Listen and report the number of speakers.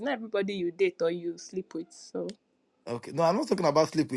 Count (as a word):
two